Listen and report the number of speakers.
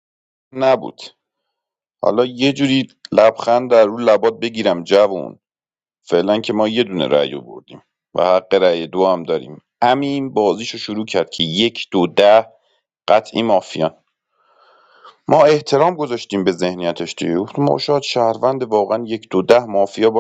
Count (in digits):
1